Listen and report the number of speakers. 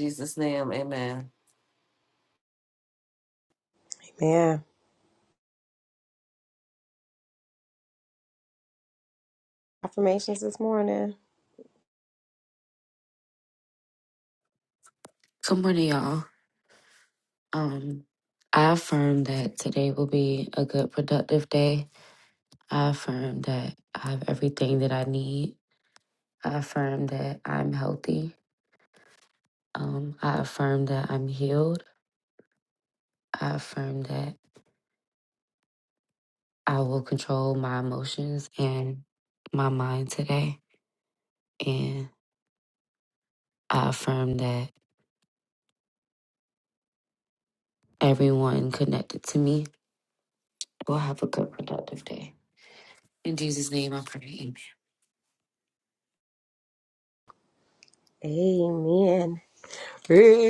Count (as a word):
three